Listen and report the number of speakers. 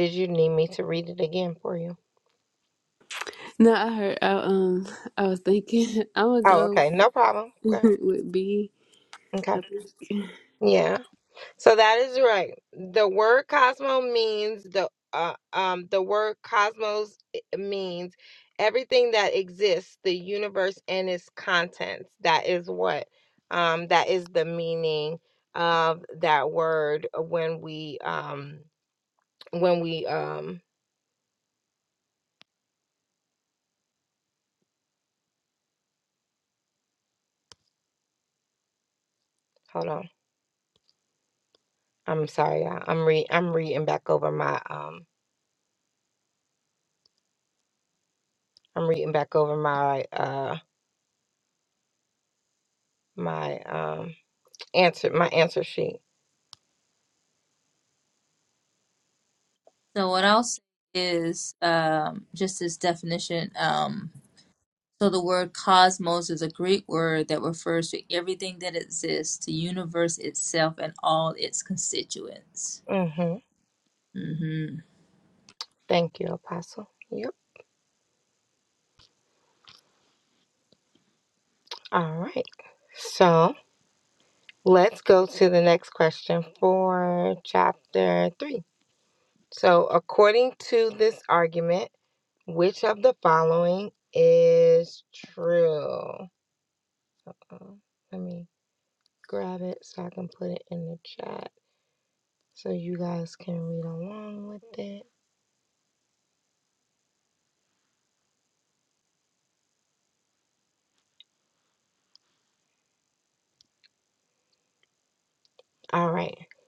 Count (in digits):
3